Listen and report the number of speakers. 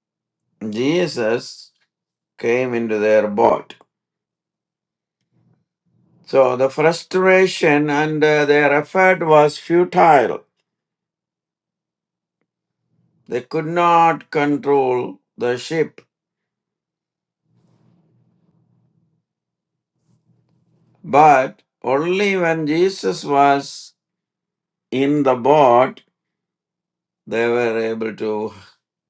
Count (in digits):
1